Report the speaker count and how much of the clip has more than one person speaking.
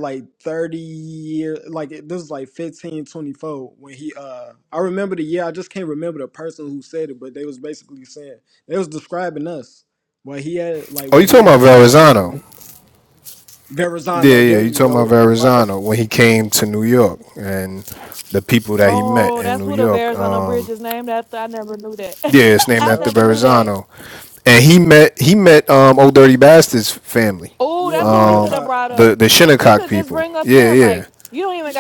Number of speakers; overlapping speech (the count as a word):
three, about 25%